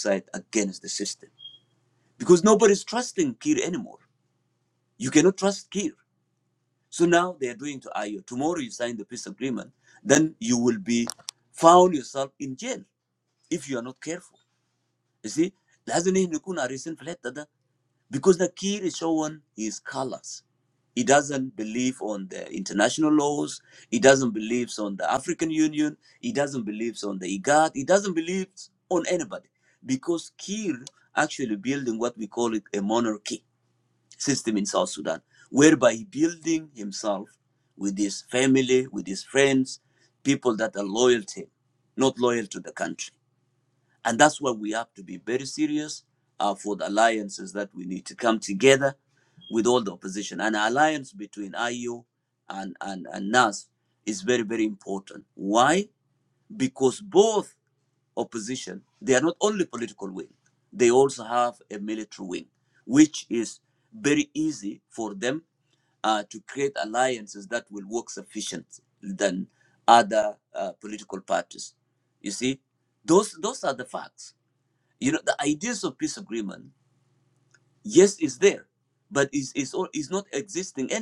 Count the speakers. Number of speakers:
1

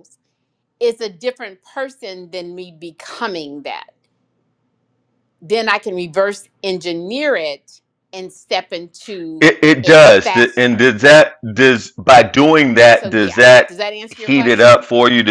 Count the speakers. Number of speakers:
2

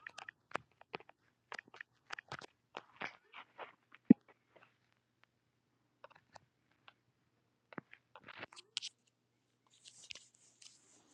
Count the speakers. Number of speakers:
0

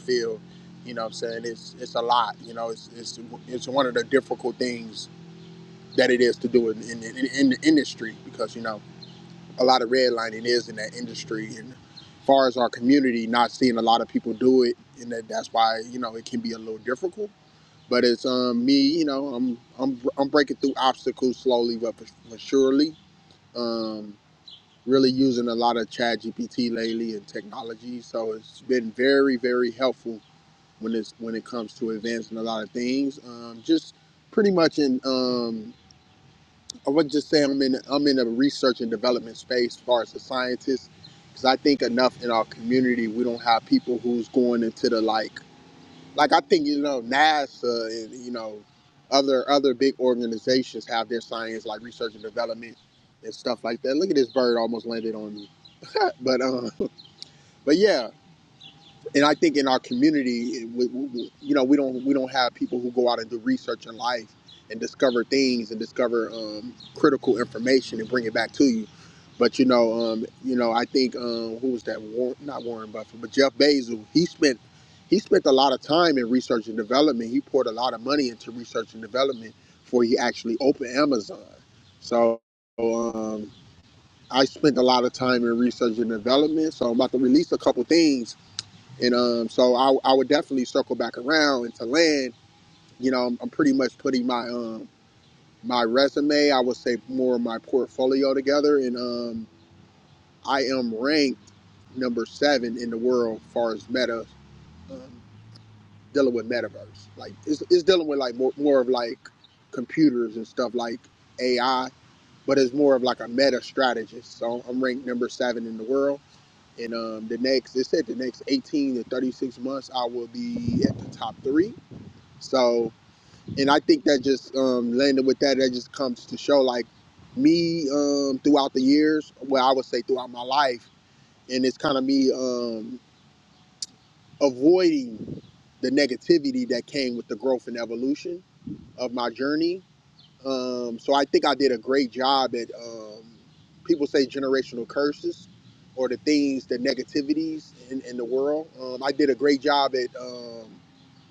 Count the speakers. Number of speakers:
1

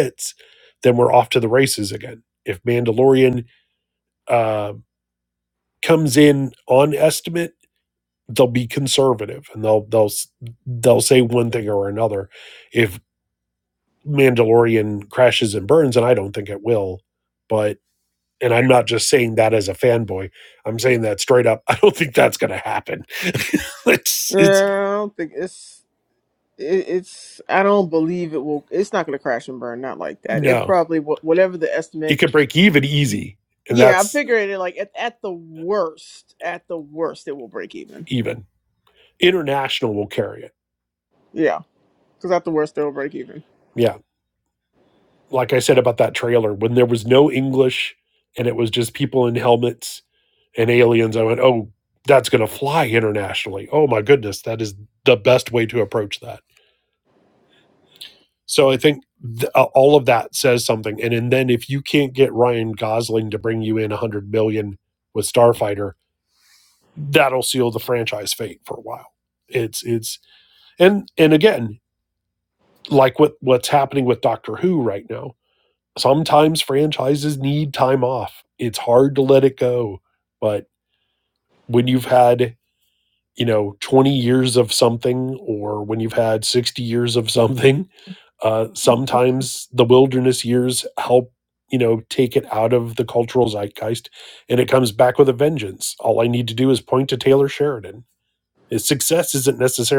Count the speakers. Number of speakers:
2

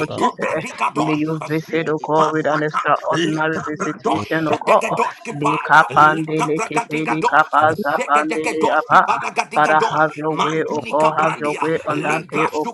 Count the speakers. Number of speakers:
2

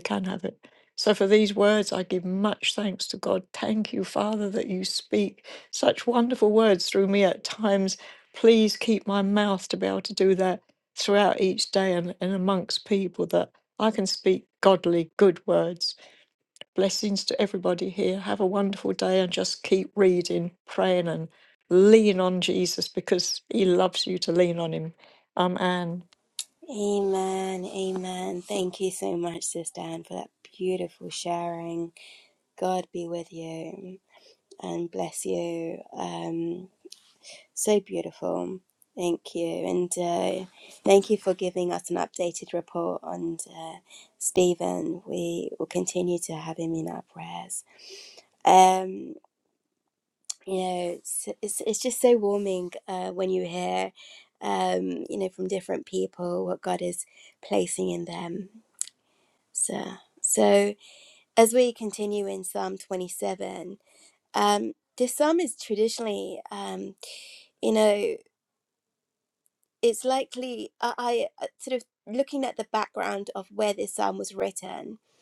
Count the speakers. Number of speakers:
2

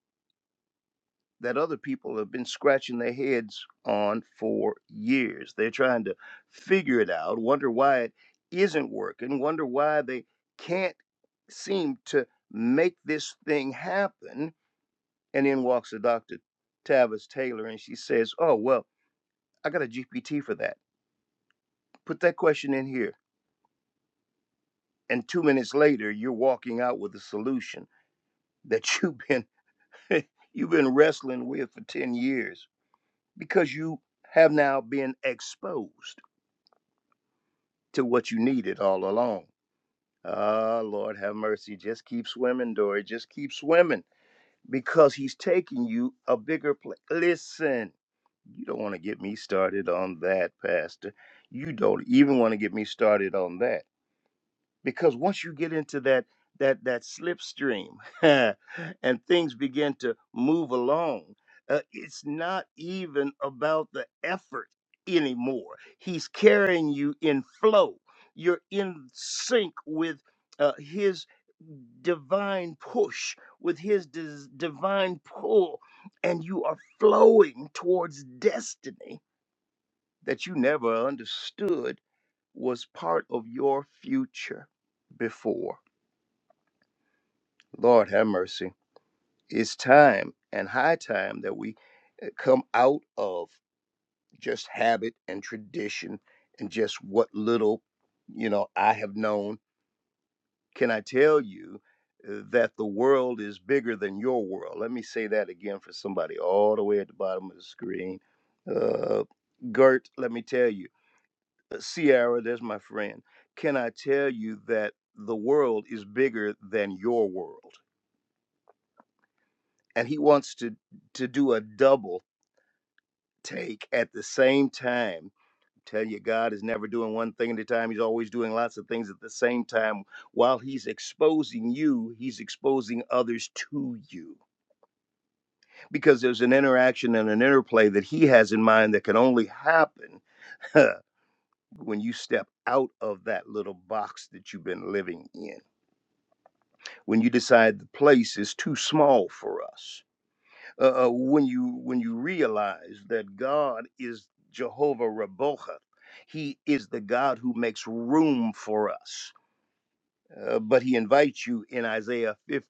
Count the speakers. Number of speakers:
1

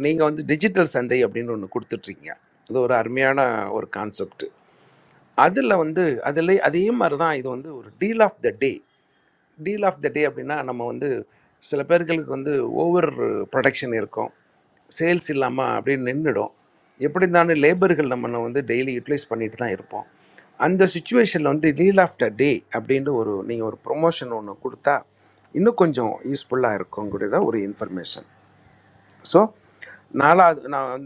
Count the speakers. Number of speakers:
1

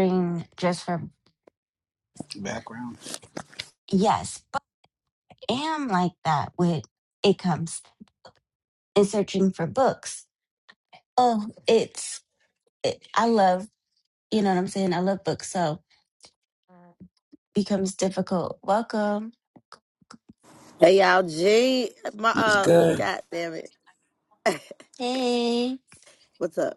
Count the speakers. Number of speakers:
3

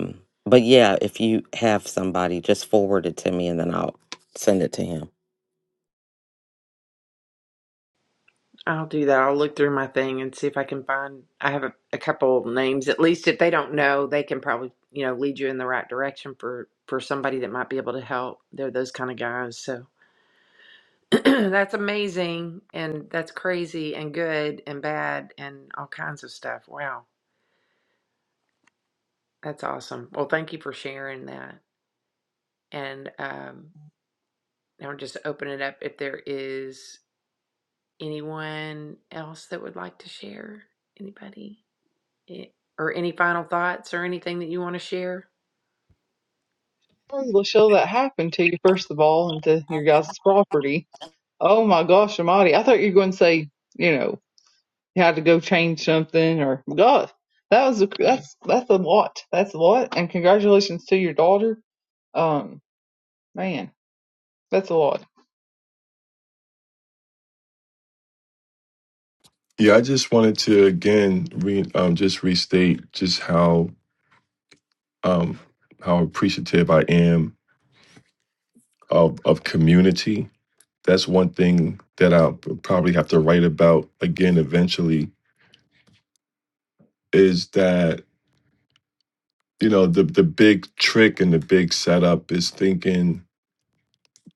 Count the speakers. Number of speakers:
4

